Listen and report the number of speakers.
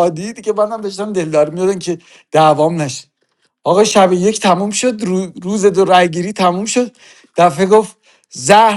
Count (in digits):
1